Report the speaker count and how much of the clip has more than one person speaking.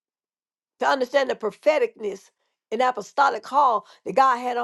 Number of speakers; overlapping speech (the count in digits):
1, no overlap